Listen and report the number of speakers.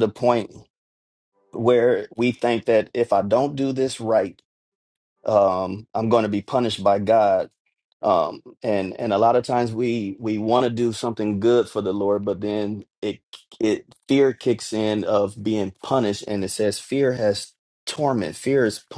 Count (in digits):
1